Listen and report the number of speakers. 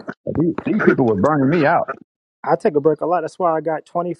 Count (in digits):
2